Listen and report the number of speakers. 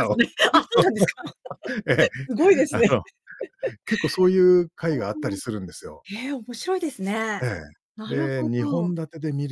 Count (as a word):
two